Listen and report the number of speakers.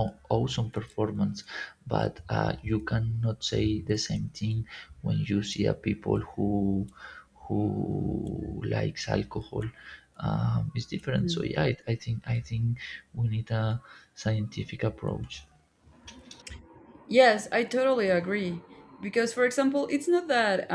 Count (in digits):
2